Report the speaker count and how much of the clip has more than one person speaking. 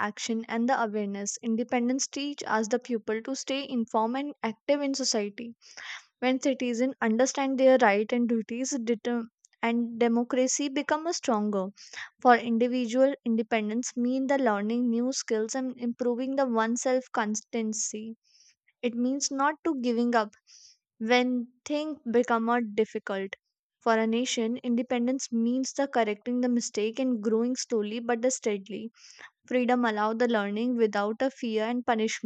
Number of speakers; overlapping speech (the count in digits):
1, no overlap